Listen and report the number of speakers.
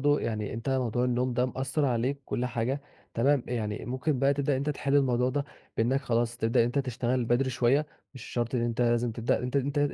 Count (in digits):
1